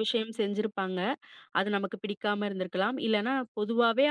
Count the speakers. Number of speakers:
1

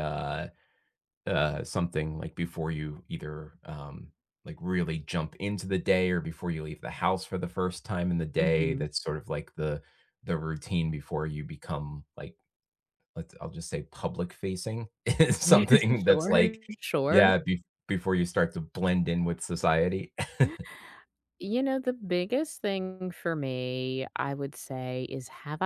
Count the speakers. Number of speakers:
2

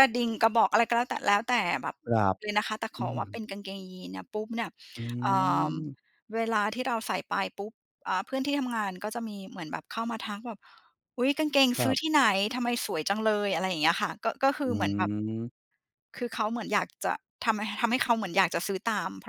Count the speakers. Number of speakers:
2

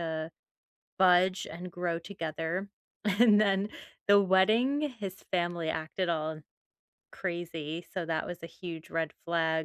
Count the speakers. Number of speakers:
1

